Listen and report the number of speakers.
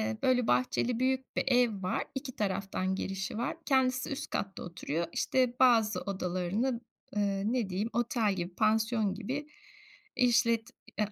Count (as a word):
one